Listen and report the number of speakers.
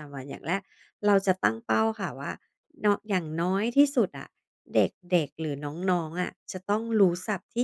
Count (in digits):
1